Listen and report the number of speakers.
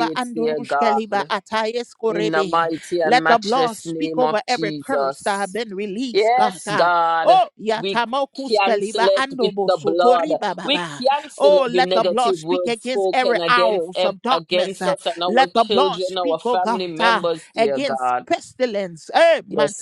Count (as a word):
two